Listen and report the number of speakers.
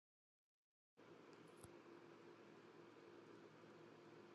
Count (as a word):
zero